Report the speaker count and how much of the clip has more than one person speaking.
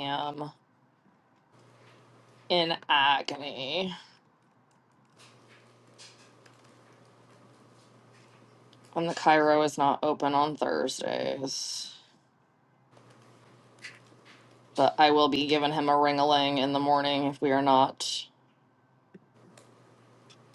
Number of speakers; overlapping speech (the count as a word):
one, no overlap